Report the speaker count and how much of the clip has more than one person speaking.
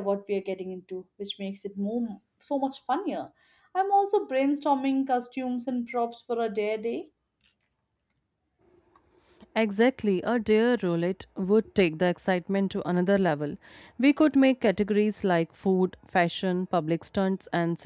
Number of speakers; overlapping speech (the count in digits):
2, no overlap